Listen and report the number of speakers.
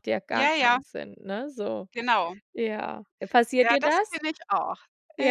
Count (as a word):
two